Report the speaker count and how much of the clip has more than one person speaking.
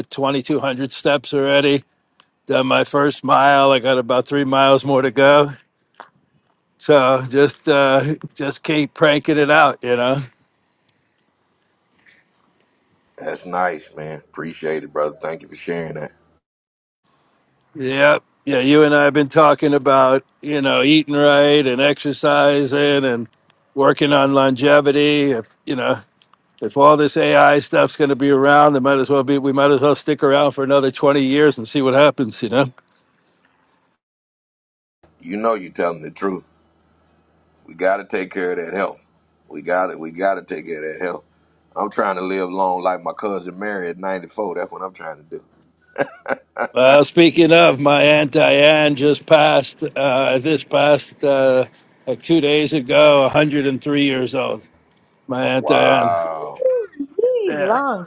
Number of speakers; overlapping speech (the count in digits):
3, about 2%